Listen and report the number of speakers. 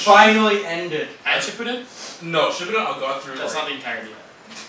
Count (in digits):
3